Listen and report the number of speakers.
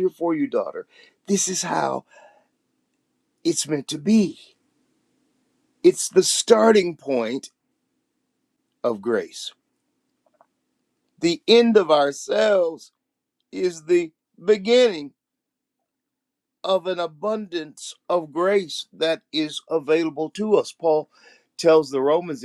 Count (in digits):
1